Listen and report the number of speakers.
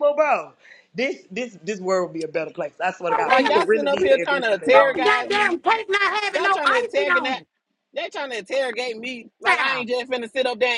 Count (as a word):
three